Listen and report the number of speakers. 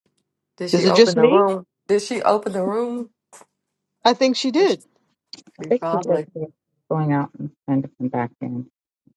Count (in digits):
3